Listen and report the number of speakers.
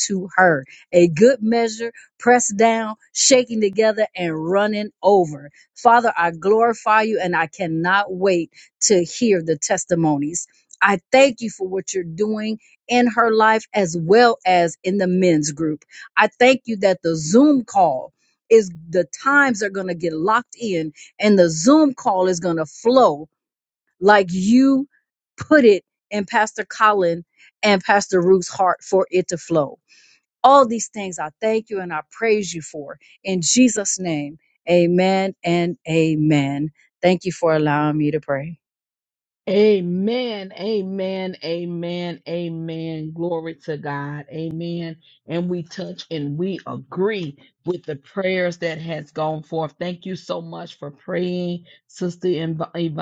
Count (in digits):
2